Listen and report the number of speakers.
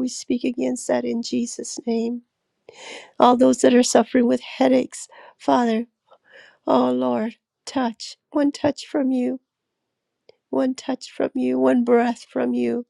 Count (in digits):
1